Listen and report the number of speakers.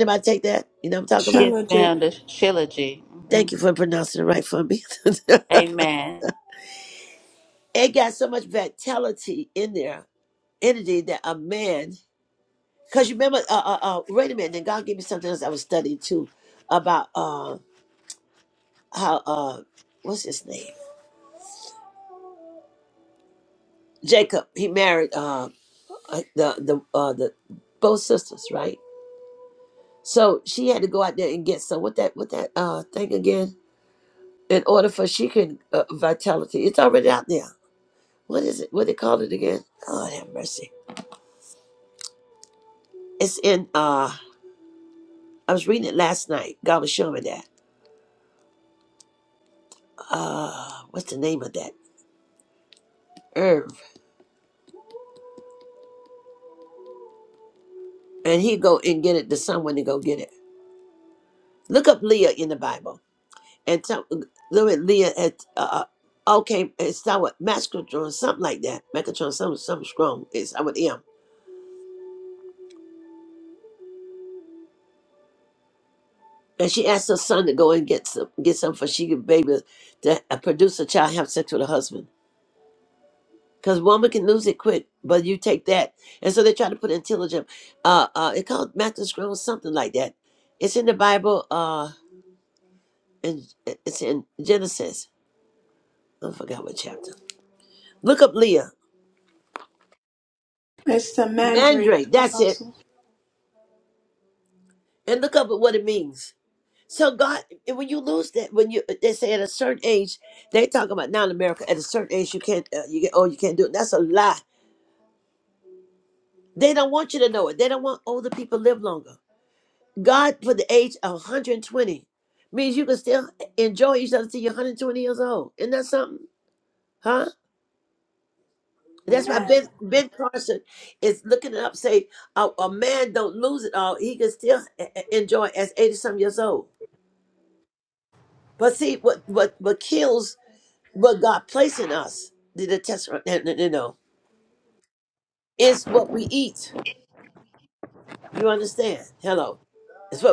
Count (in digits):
3